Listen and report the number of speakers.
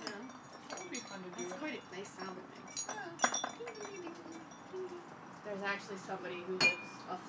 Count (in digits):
2